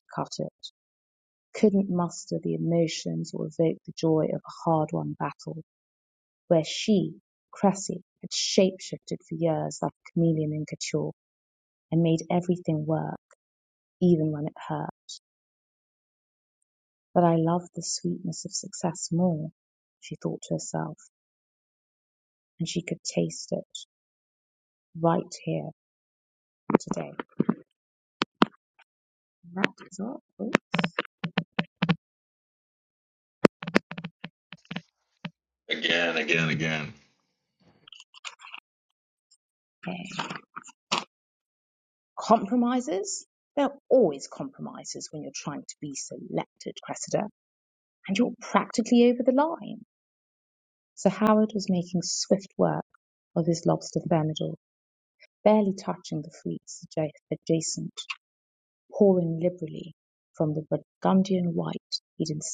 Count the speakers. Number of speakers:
two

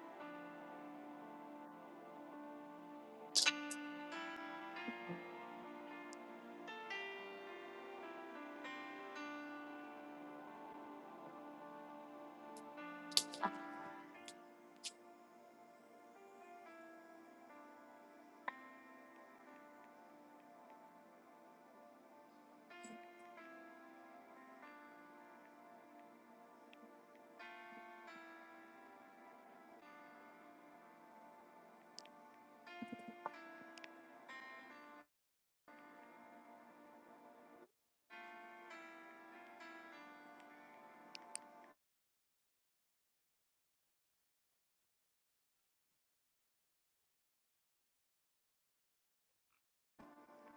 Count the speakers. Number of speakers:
zero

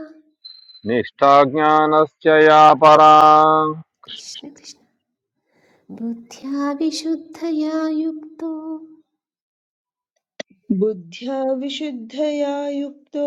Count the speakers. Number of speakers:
three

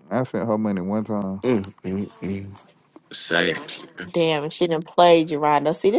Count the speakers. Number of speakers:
three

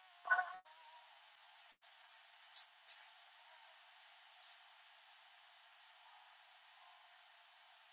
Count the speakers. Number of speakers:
zero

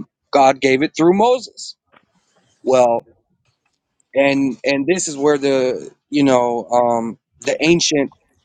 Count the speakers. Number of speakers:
one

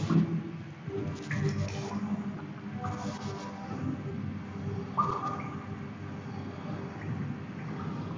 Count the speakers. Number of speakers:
zero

